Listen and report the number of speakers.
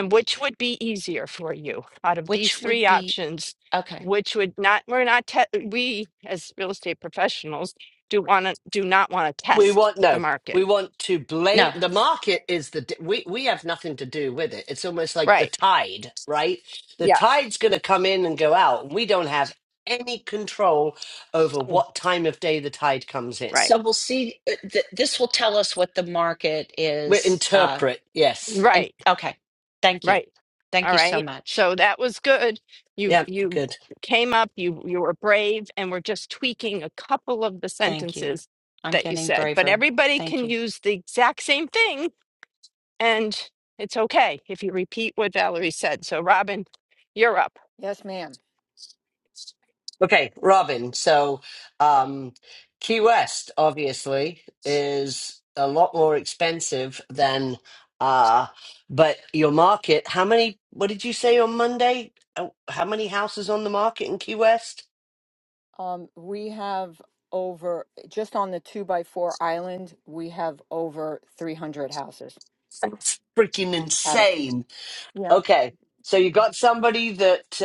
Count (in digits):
4